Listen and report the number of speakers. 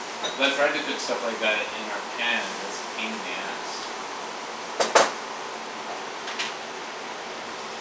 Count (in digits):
1